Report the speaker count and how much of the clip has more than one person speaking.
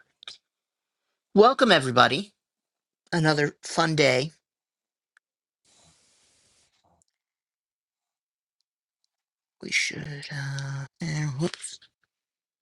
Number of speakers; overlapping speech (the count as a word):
one, no overlap